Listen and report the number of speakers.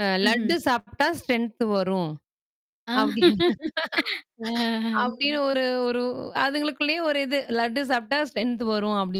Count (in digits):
2